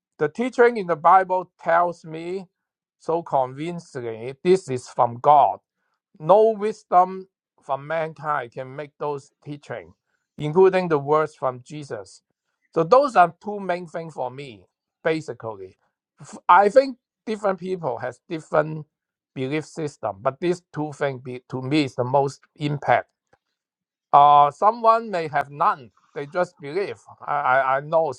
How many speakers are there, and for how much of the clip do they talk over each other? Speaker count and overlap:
1, no overlap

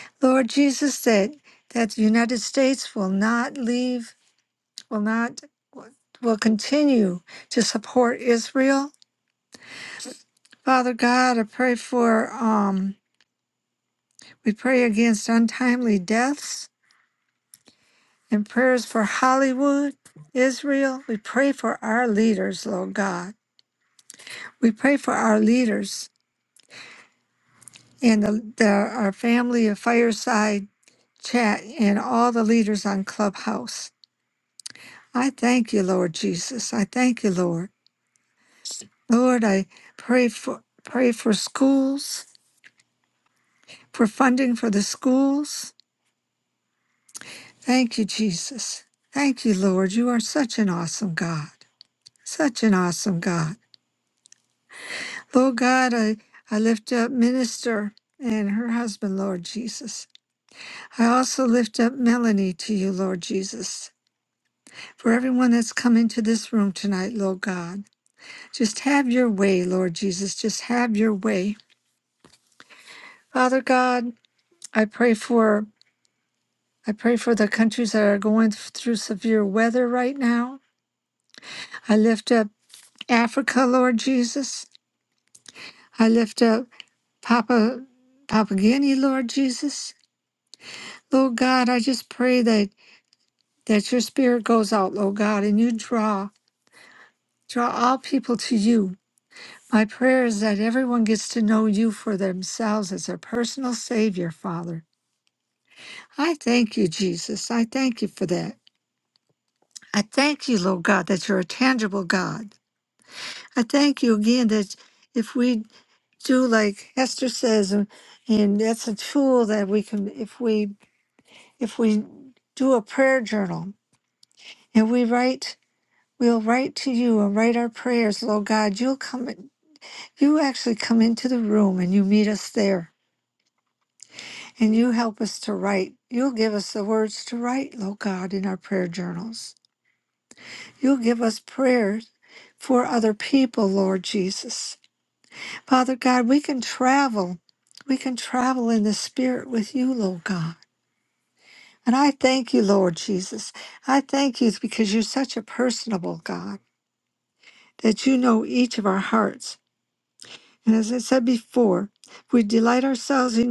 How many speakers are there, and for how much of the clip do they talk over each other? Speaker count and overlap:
1, no overlap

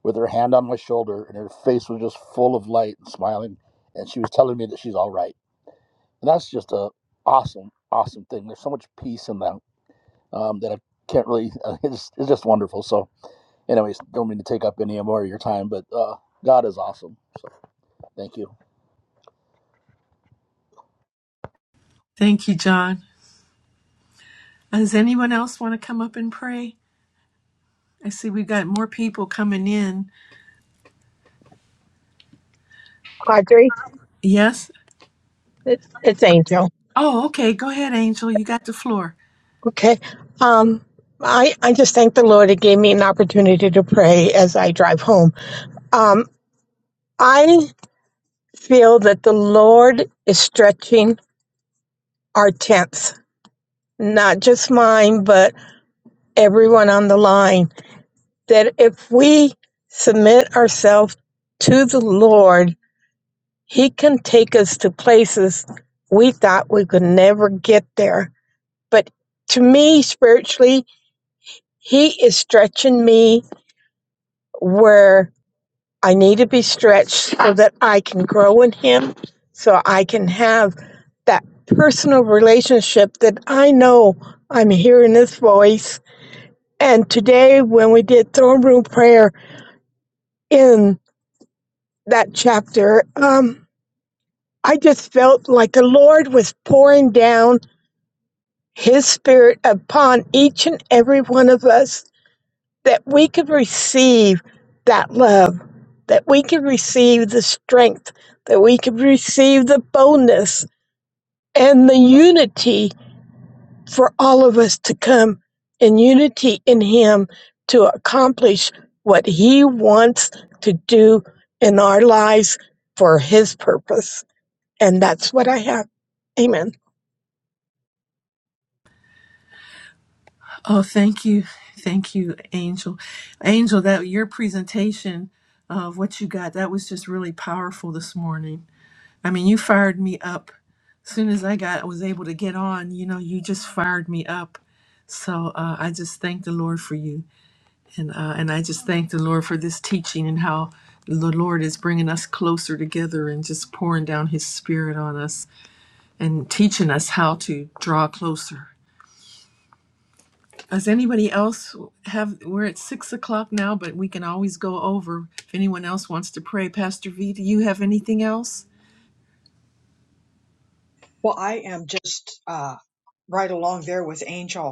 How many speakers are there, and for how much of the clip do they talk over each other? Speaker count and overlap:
4, no overlap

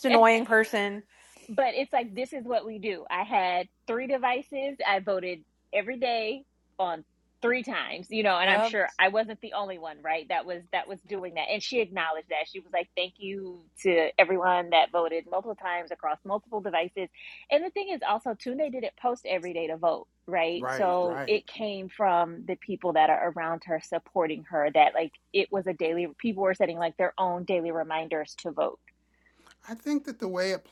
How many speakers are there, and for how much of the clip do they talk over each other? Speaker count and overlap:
3, about 4%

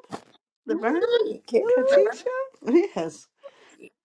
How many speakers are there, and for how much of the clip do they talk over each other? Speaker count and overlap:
2, about 23%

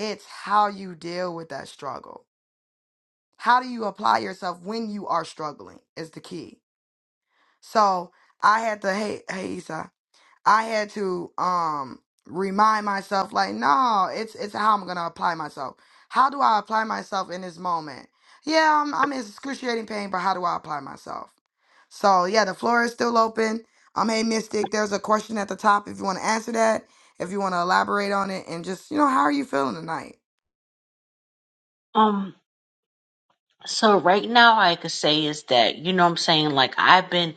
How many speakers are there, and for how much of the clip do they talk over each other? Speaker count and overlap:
2, no overlap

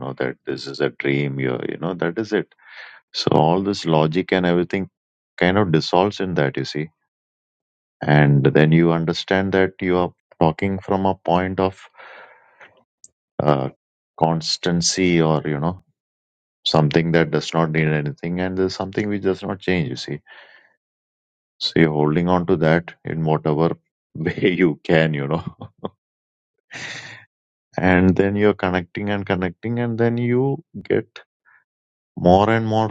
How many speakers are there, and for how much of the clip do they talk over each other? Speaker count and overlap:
1, no overlap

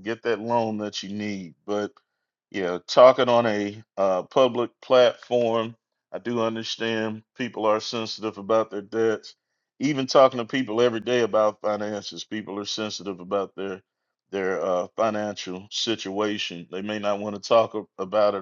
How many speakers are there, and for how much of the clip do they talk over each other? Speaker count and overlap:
1, no overlap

